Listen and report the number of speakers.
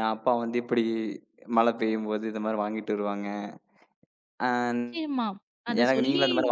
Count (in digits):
2